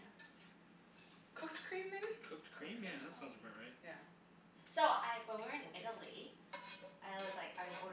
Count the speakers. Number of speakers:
3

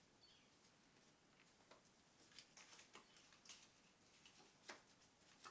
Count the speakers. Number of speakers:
0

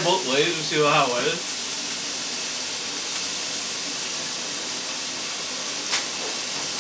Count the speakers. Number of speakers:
1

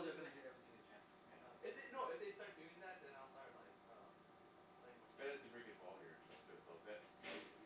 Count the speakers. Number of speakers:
3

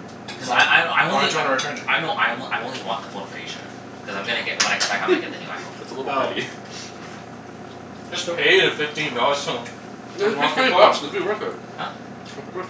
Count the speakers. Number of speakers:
4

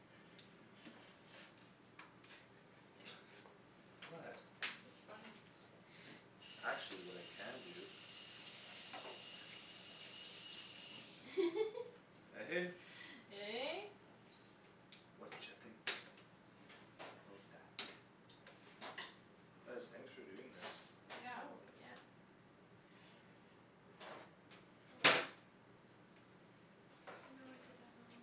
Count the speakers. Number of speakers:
3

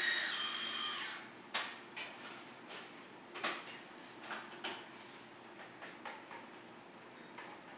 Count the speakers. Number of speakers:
0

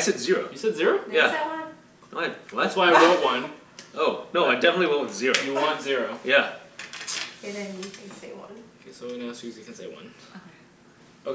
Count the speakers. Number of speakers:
3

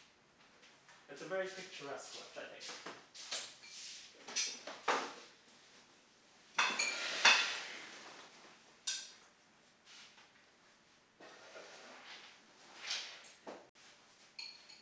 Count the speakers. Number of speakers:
1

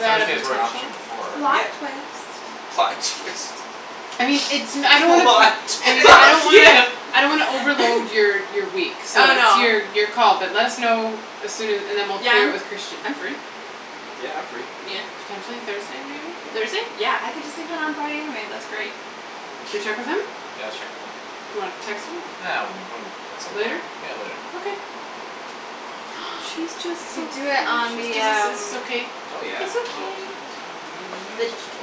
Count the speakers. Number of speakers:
4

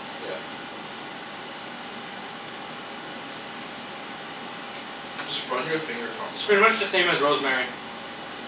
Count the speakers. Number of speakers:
2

